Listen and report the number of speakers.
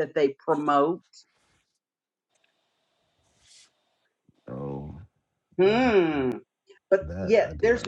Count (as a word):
two